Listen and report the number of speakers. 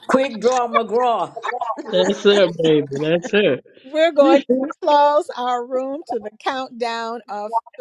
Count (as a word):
three